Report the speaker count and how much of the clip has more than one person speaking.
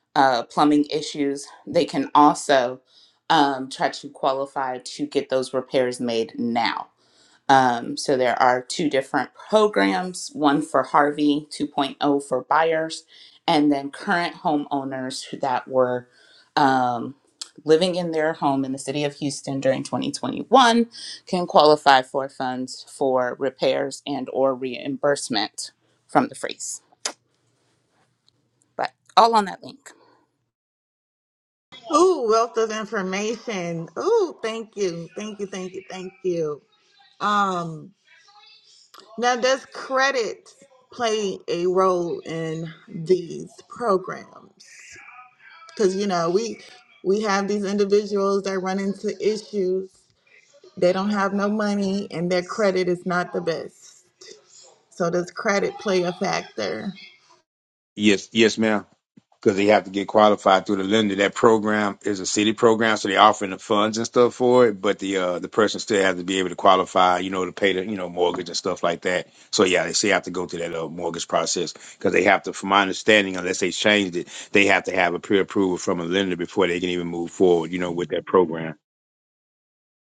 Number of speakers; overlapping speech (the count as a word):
three, no overlap